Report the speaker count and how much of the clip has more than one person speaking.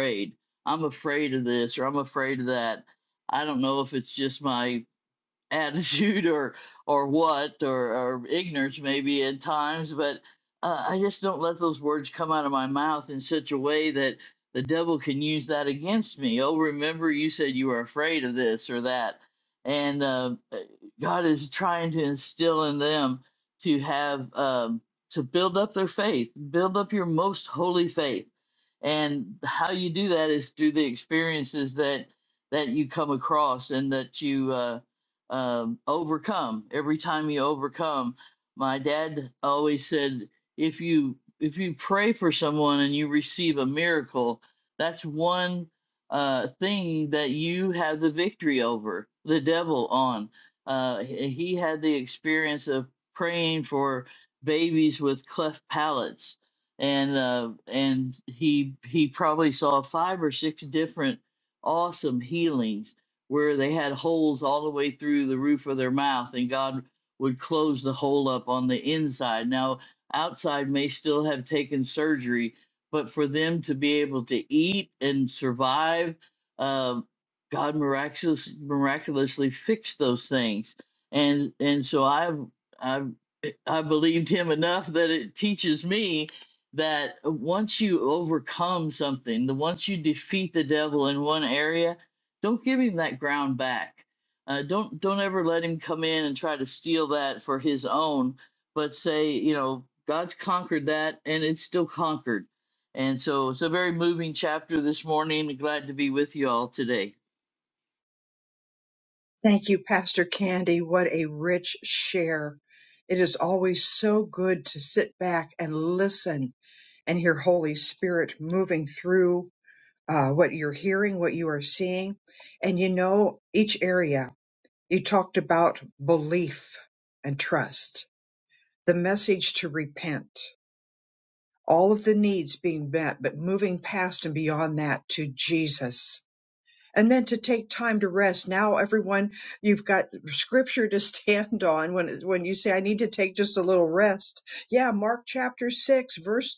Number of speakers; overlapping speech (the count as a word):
two, no overlap